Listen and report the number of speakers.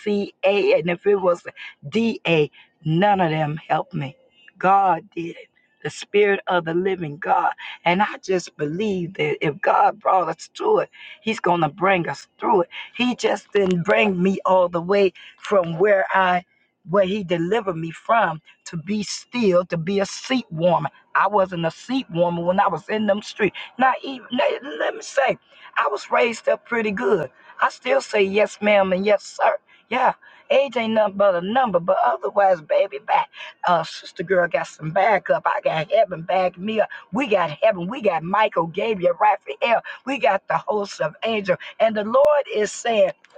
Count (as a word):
one